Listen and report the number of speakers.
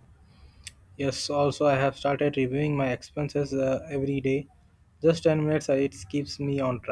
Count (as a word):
one